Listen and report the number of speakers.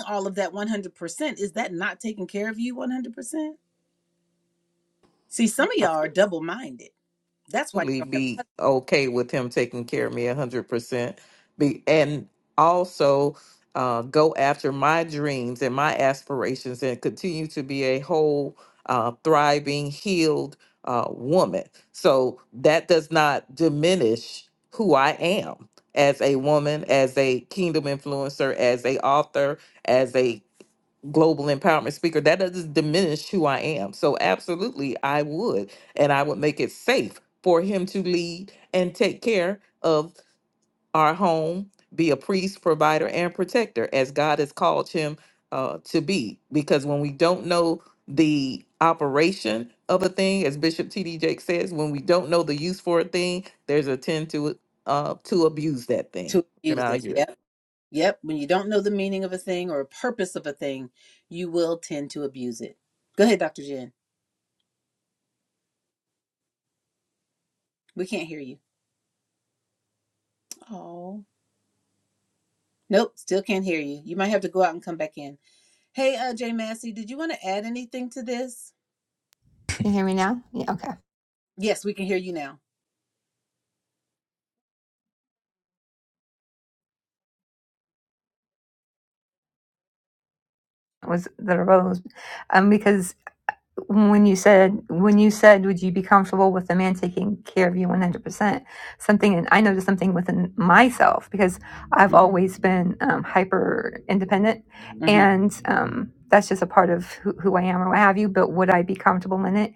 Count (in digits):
3